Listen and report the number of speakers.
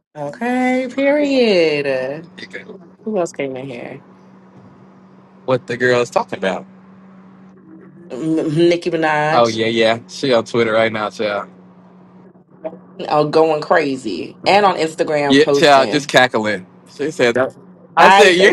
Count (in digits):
2